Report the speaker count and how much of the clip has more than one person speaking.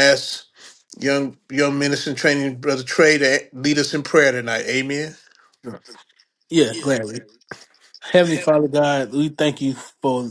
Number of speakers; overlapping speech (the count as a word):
two, no overlap